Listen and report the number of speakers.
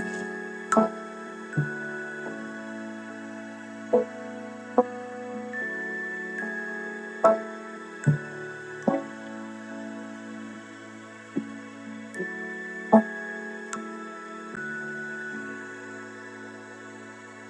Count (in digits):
0